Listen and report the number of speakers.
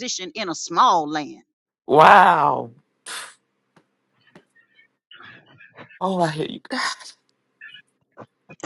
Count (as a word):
two